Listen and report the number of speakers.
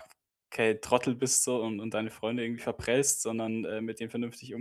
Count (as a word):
one